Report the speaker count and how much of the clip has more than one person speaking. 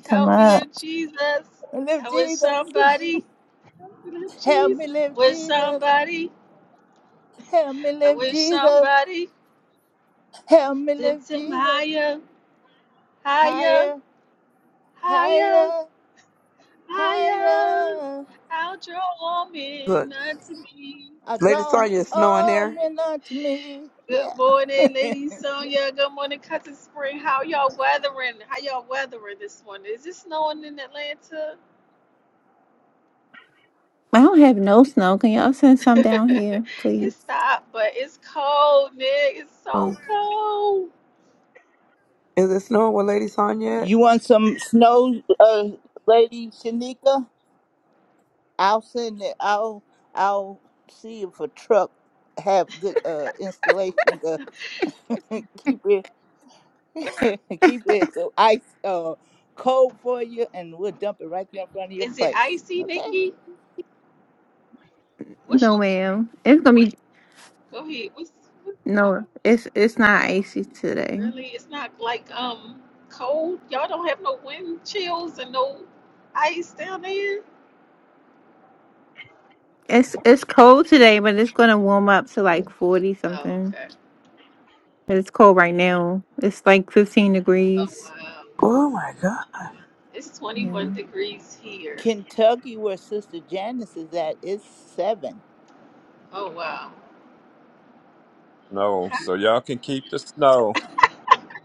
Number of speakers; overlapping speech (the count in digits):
5, about 11%